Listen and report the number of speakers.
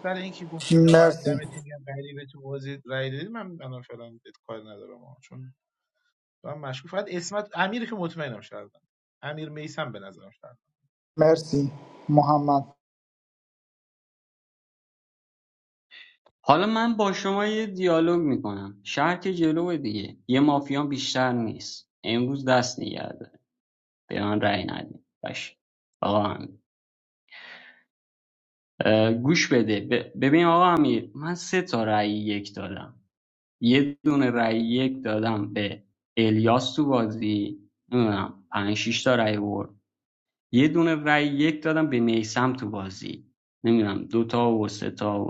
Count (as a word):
three